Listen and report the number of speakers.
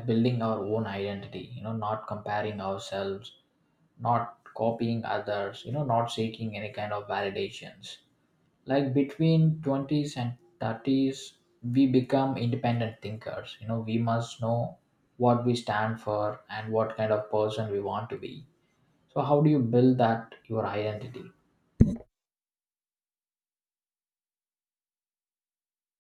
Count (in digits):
1